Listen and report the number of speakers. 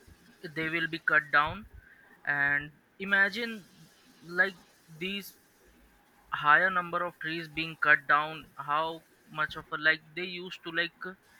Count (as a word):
one